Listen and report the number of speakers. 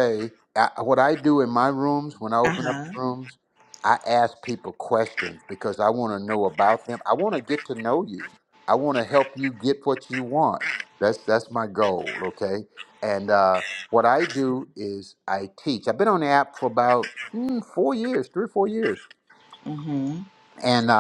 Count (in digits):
2